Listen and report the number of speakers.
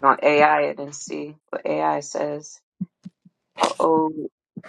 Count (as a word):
one